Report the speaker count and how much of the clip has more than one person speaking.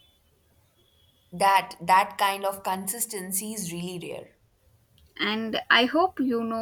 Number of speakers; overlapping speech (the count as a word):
two, no overlap